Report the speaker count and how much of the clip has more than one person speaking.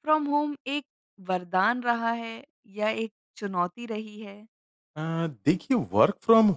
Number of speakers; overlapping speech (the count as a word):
two, no overlap